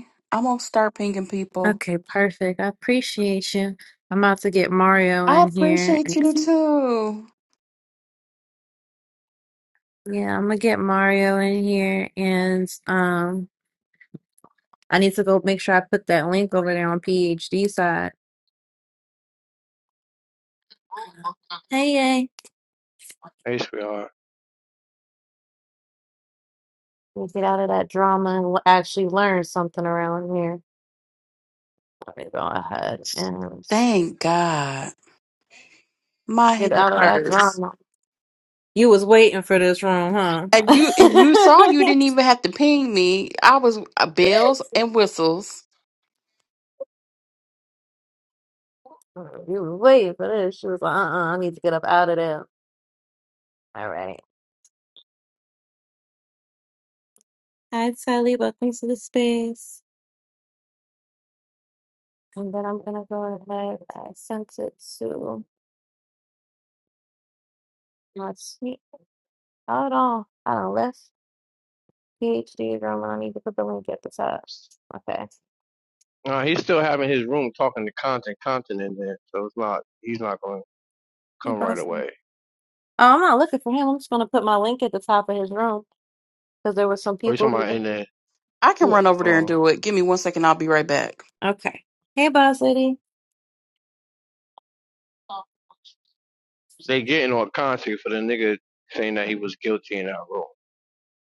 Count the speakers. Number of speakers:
3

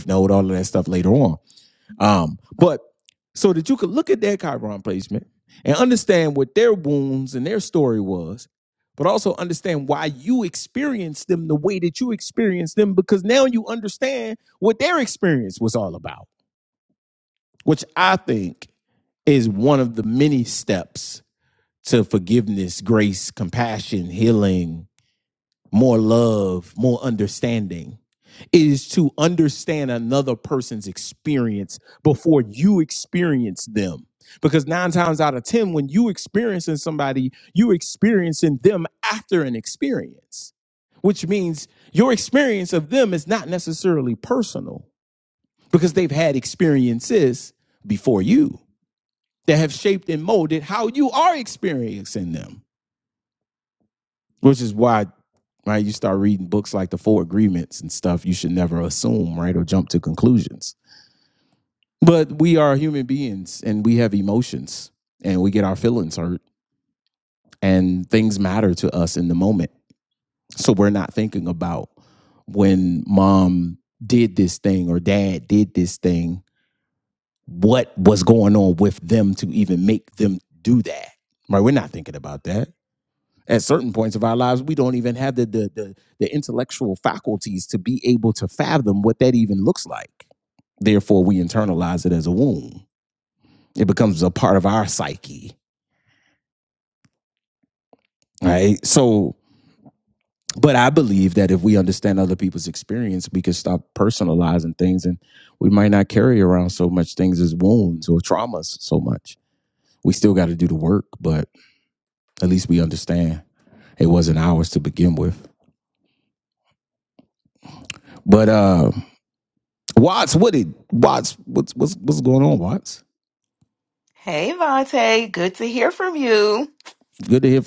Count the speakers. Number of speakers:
2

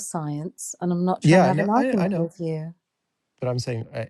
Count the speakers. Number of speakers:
2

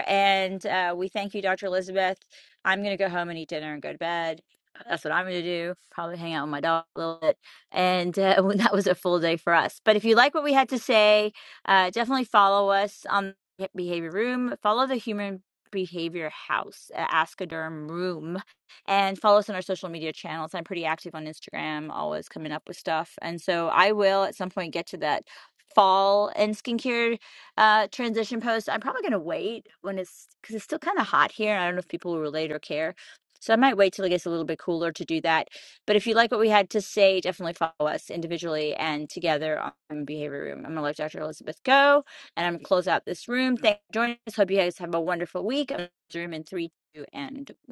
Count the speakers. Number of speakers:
1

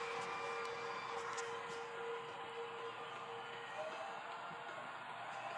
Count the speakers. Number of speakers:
0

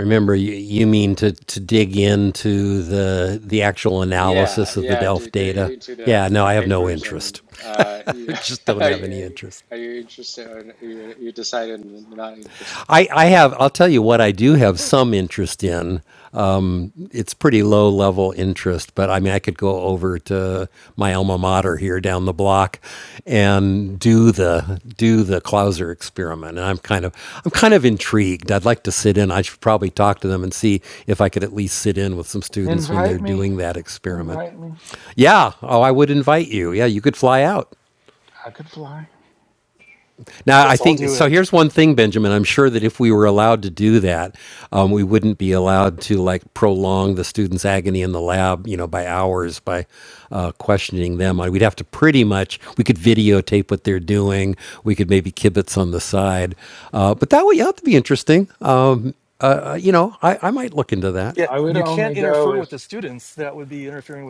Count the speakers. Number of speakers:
4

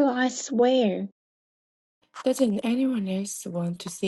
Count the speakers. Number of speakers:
2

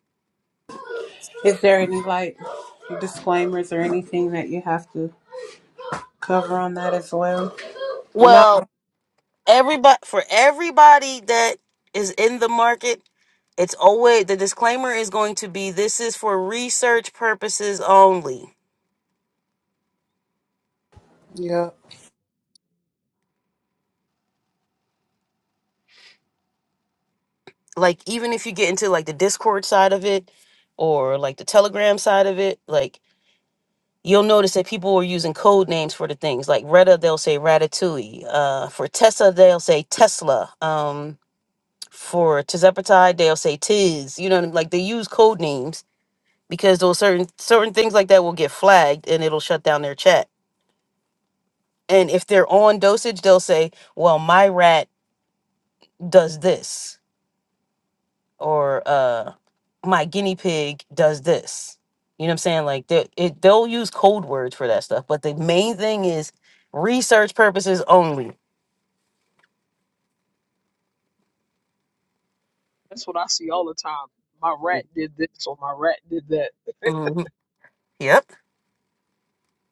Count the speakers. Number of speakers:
3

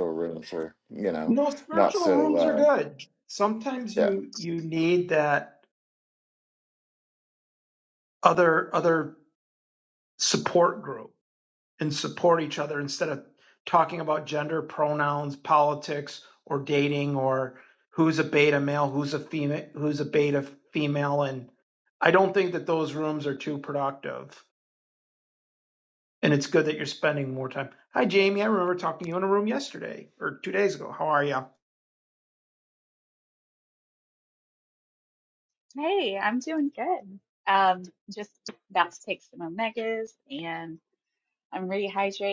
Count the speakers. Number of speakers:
3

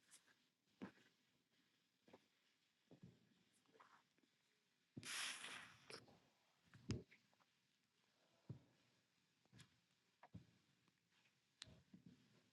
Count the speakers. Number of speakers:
0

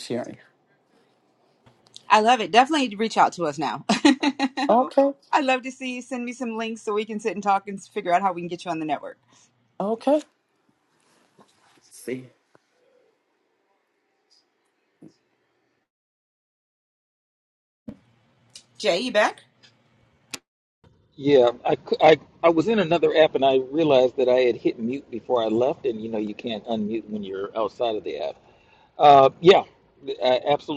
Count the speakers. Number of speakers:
3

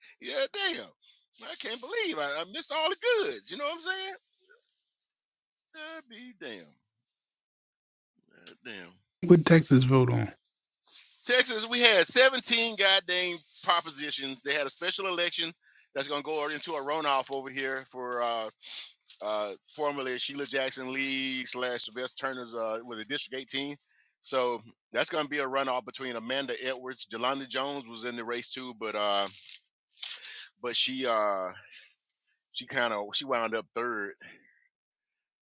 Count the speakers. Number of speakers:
2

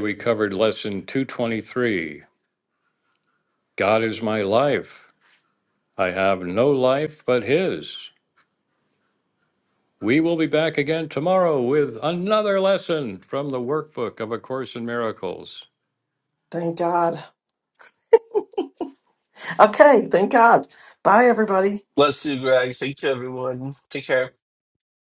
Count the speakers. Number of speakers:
3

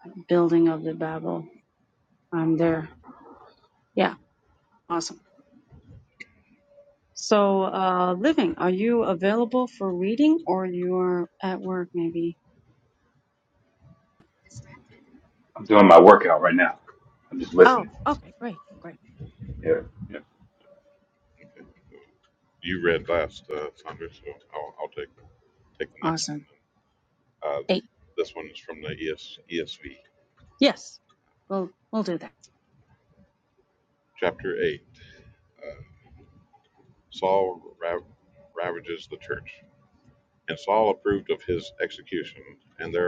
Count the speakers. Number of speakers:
3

